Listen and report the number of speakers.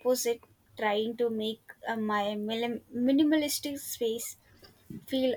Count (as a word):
one